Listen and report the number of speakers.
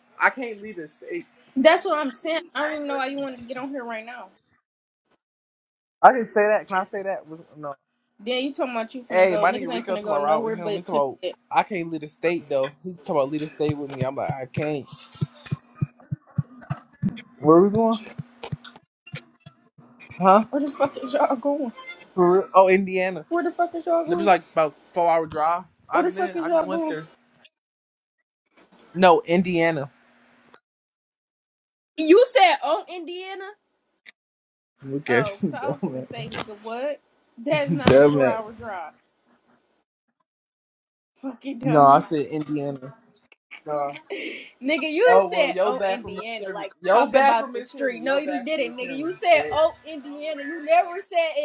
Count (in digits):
2